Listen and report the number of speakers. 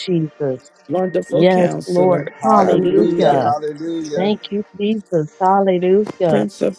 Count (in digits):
3